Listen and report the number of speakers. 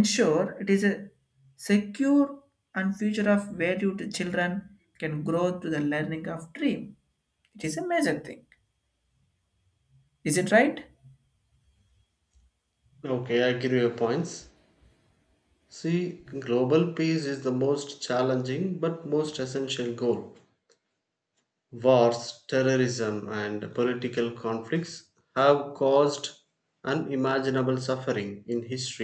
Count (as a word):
two